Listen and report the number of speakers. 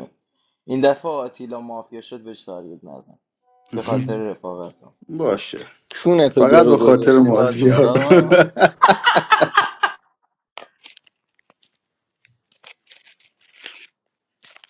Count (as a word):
three